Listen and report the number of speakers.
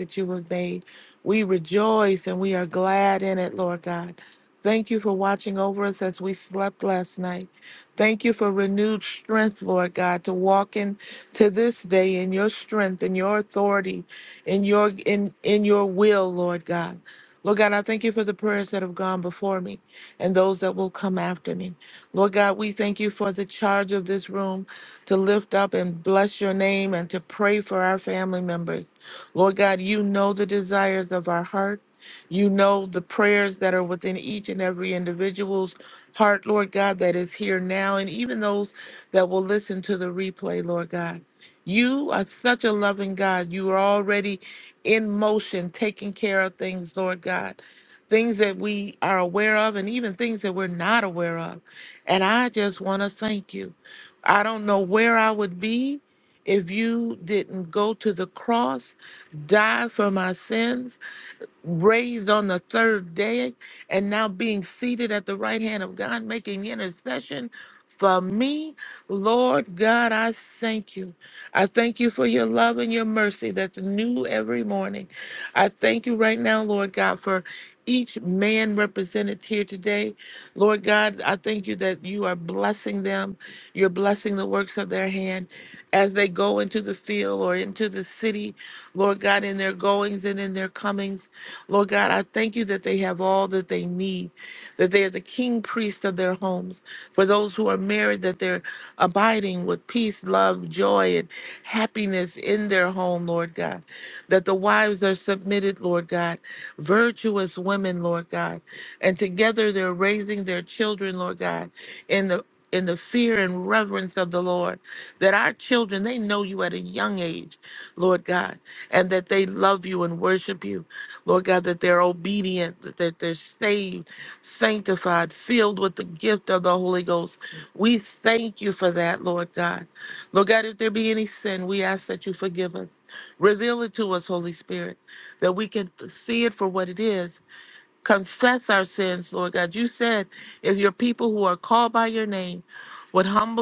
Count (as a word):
one